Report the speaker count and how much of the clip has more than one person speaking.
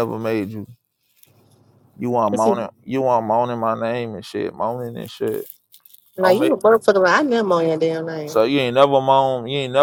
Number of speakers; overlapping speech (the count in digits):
2, about 7%